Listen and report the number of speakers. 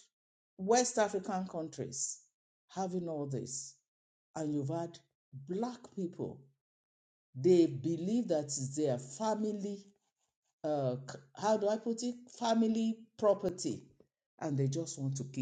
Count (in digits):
1